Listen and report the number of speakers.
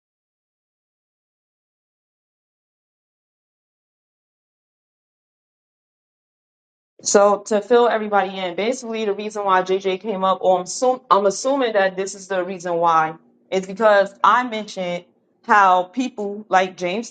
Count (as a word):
one